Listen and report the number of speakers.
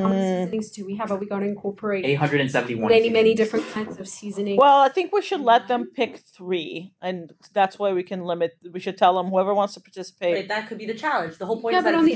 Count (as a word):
four